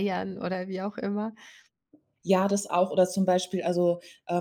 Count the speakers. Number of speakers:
two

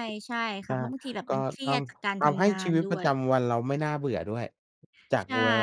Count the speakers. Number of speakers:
two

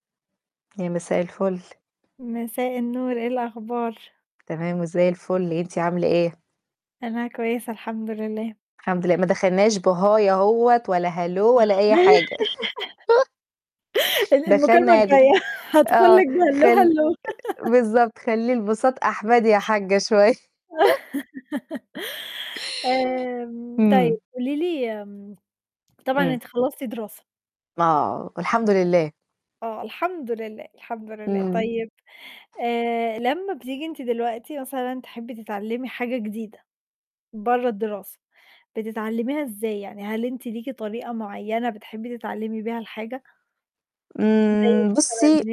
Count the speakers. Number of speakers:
two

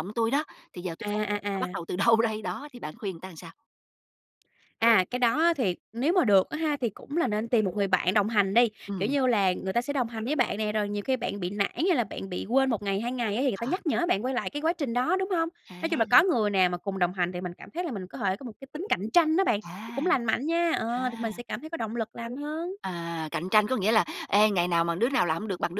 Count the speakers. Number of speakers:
two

